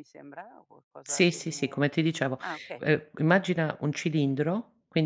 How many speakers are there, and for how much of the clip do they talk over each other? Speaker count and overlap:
2, about 15%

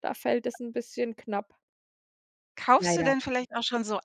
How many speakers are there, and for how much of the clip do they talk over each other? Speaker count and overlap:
2, about 9%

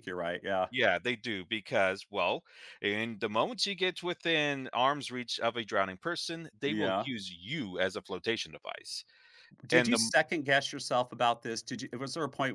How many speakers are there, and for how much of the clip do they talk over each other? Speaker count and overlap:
2, about 6%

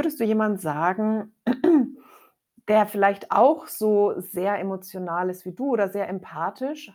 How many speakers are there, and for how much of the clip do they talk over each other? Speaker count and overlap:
1, no overlap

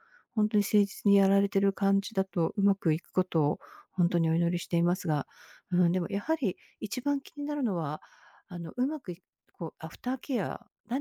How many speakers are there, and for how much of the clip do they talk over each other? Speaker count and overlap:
1, no overlap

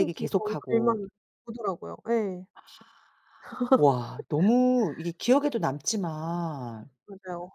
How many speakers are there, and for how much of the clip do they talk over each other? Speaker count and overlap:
2, about 13%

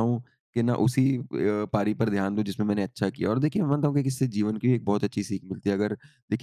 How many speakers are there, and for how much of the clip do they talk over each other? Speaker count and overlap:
1, no overlap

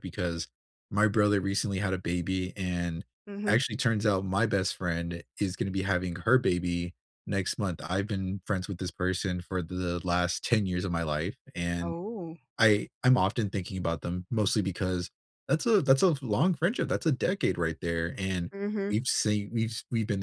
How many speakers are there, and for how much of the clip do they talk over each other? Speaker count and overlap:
2, about 1%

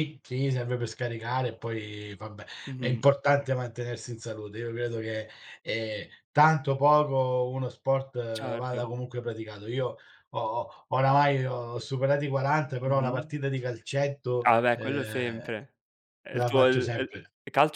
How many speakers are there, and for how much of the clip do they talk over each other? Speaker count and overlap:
2, about 16%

